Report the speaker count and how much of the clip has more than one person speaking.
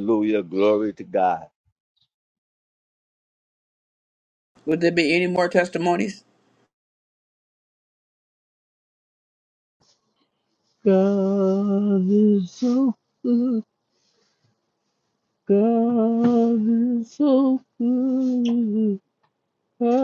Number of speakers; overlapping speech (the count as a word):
three, no overlap